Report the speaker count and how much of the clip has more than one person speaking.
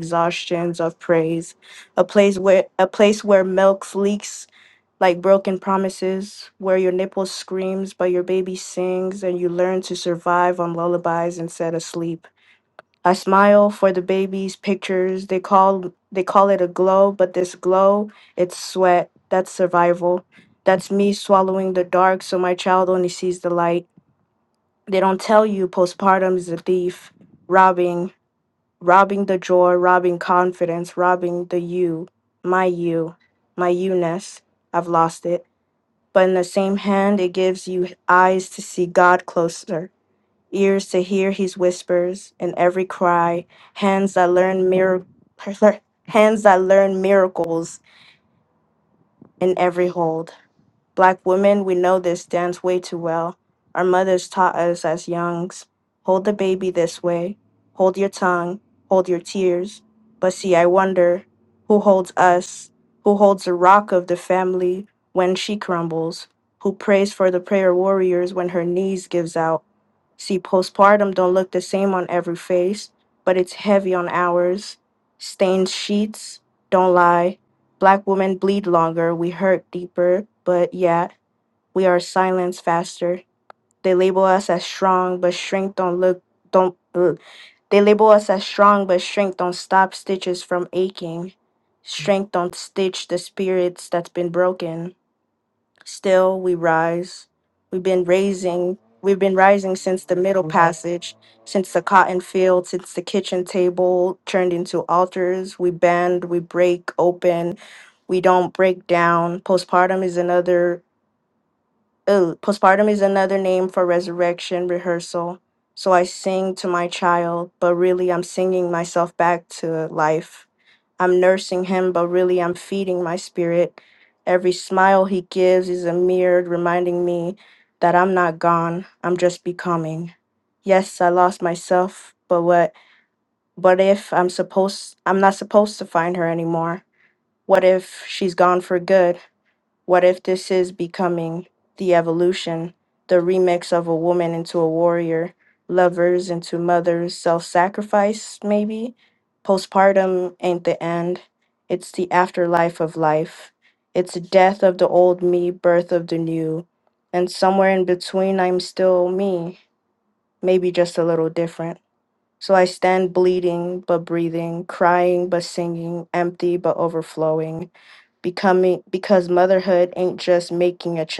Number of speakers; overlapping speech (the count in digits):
1, no overlap